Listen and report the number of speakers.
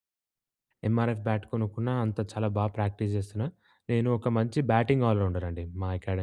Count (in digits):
1